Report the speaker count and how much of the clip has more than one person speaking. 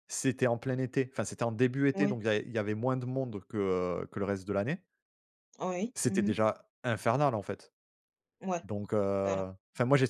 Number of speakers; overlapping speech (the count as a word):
two, about 8%